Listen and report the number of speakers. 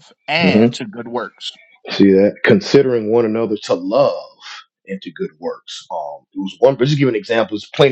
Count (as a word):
two